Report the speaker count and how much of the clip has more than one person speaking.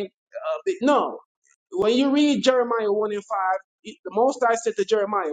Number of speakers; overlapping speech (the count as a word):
one, no overlap